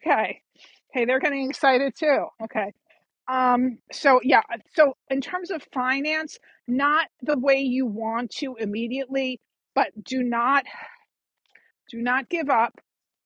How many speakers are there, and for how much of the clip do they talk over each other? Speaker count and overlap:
1, no overlap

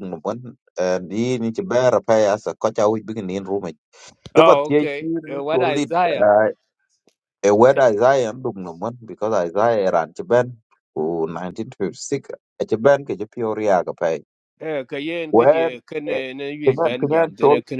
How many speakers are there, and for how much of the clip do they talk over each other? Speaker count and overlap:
2, about 18%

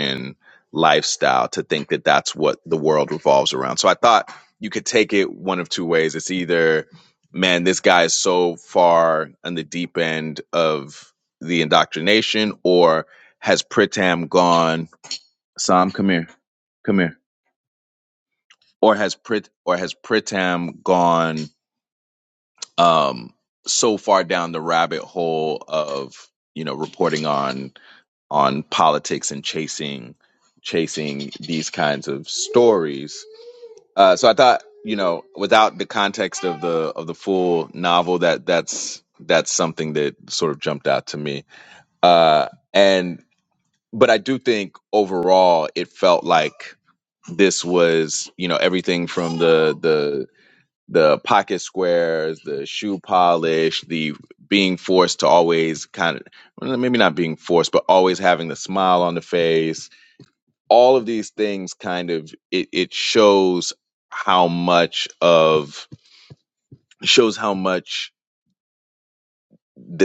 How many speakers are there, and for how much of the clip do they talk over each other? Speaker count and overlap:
1, no overlap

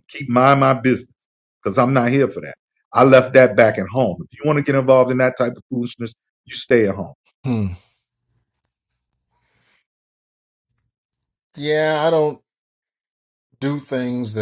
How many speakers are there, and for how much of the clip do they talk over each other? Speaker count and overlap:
2, no overlap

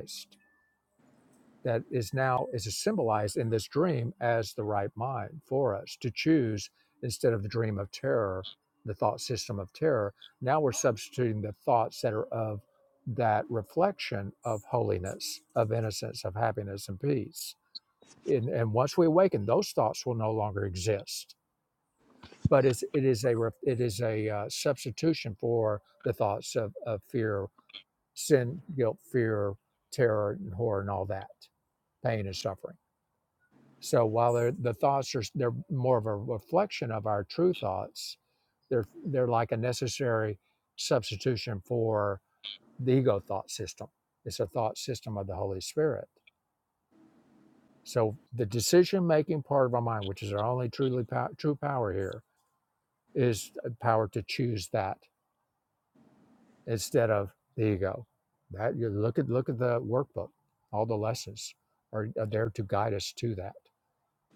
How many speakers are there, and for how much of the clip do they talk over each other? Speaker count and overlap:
1, no overlap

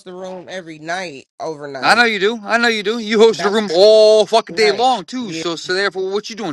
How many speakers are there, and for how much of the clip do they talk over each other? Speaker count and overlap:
2, about 15%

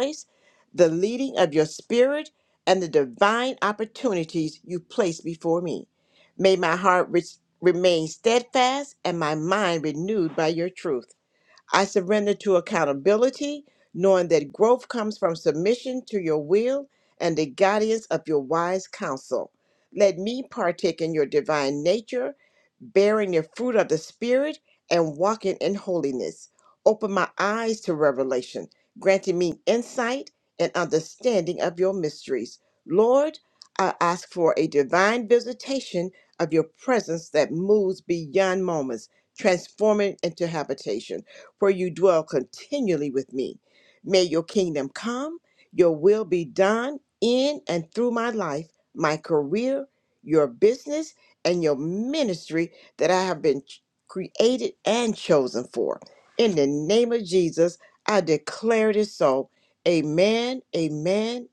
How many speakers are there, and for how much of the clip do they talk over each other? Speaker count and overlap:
1, no overlap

